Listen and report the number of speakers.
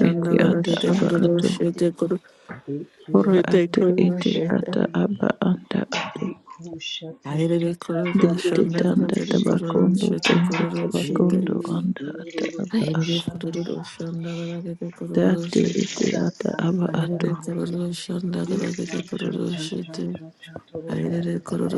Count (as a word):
three